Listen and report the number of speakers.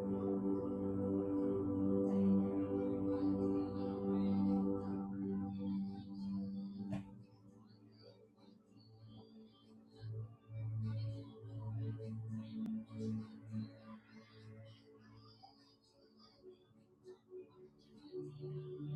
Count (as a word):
zero